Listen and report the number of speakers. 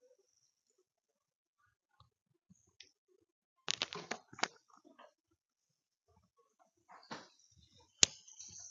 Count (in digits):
0